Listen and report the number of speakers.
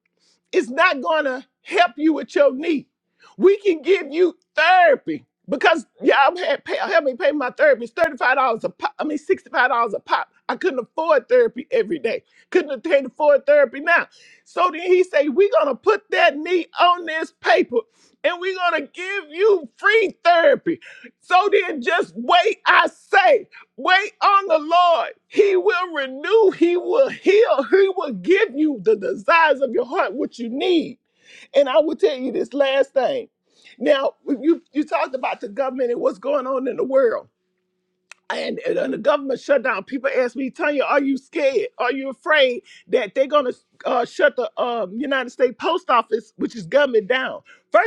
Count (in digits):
1